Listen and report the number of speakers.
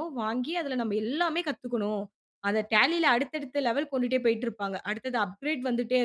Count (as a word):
one